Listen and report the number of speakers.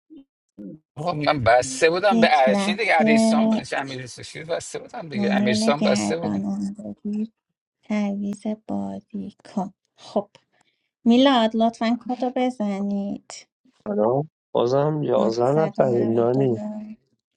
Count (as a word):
three